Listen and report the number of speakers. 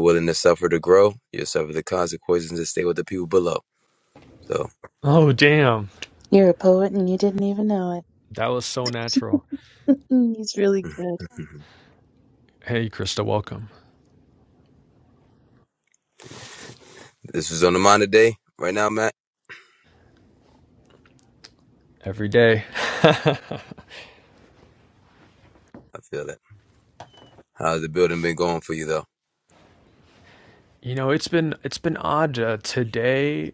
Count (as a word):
three